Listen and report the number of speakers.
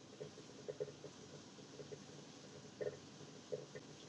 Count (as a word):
zero